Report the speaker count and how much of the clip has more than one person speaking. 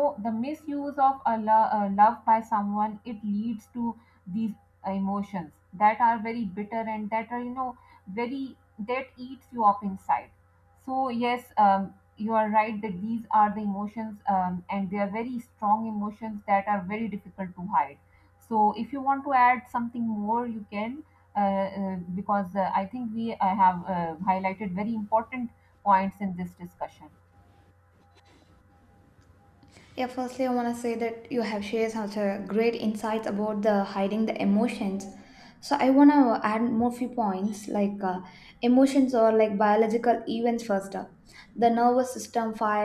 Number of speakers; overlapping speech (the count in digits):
2, no overlap